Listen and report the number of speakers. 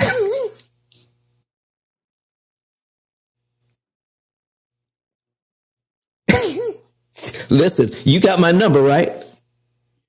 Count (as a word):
one